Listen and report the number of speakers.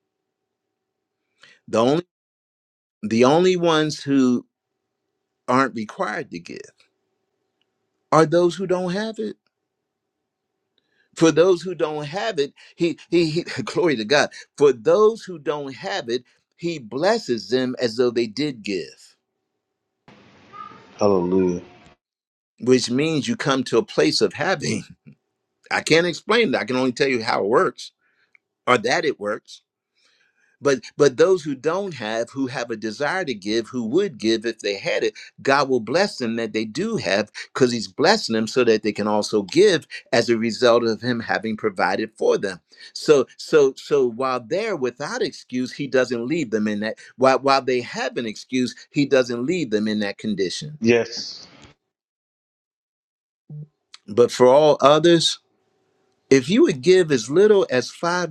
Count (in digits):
2